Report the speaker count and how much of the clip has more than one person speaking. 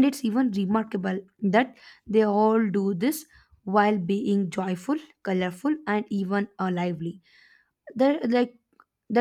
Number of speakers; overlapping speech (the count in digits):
1, no overlap